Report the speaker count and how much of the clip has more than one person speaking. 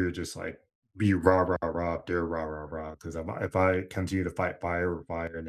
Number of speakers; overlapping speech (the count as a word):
one, no overlap